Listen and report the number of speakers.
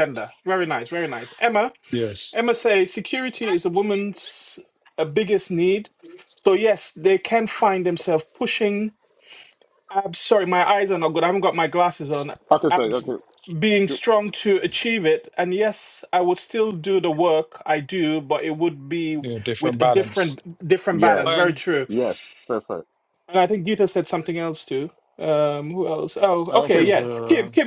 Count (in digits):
3